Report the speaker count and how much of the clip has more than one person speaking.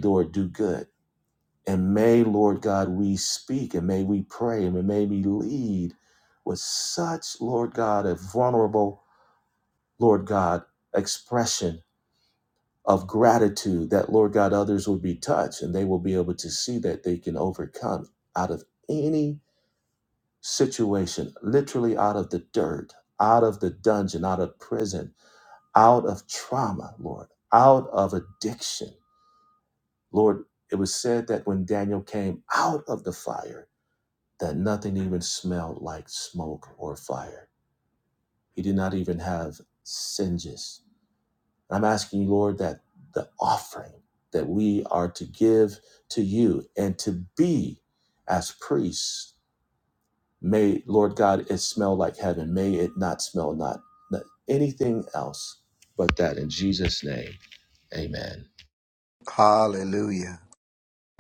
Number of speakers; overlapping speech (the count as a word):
two, no overlap